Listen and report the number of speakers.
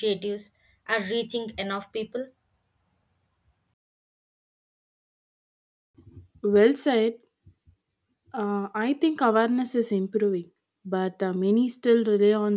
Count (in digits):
2